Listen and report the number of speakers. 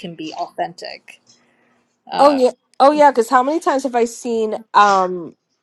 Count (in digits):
2